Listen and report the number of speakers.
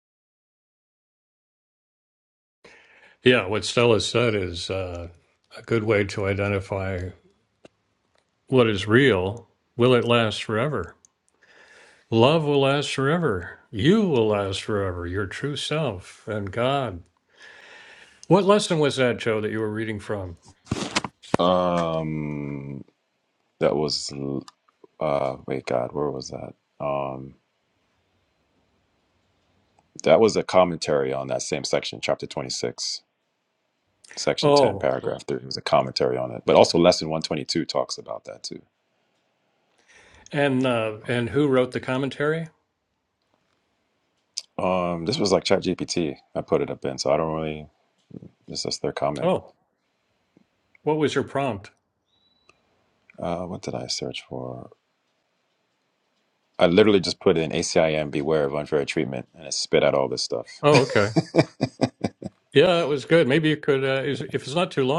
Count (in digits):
2